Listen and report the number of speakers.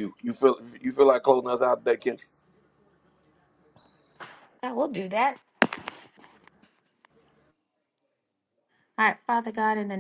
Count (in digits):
2